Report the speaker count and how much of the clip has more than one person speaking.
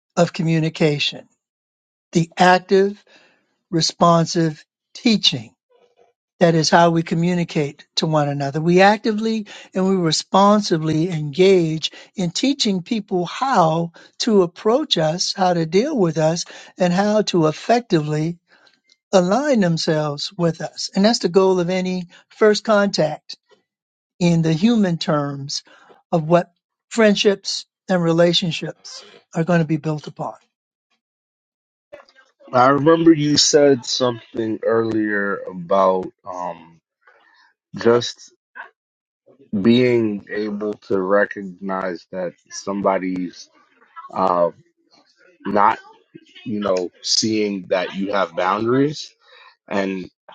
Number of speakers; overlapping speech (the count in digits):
2, no overlap